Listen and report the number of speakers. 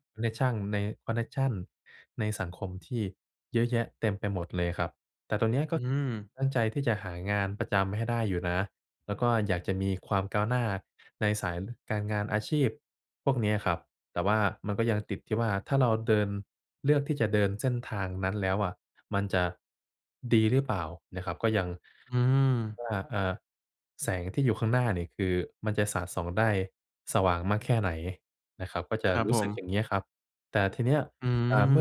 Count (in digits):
2